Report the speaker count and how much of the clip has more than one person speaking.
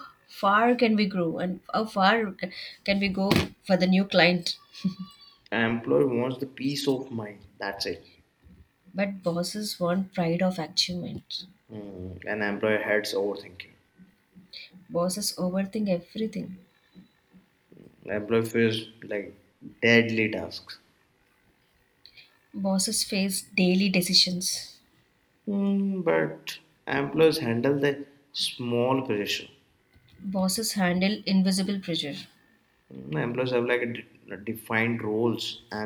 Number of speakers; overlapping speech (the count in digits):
2, no overlap